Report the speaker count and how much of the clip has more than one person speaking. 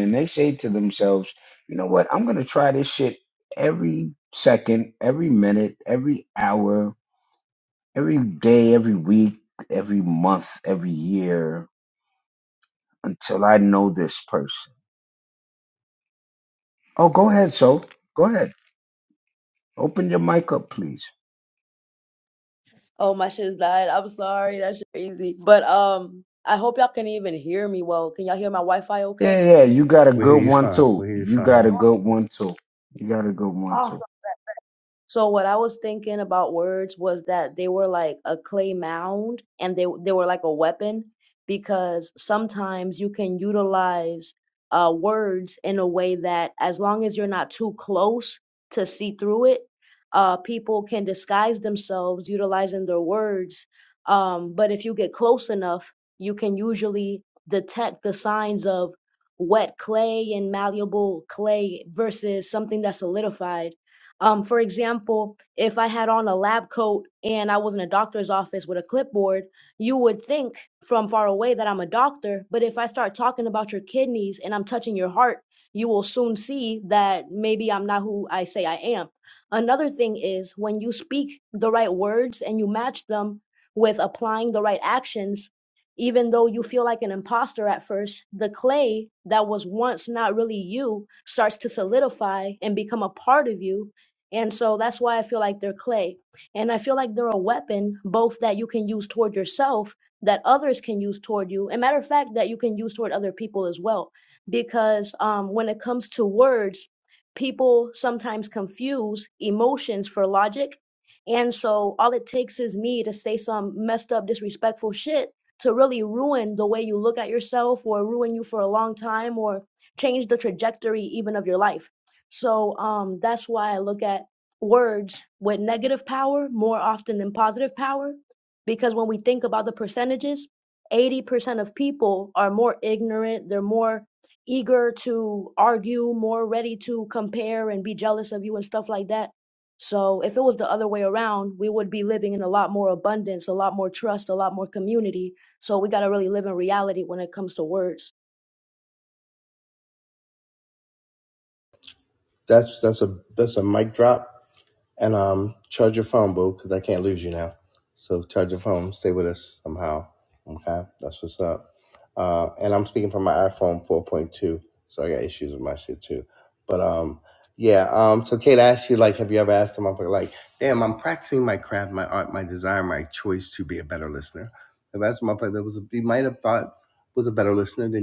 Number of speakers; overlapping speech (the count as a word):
three, about 1%